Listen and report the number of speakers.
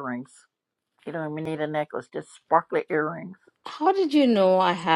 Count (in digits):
2